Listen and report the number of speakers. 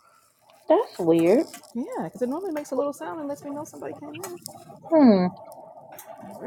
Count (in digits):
2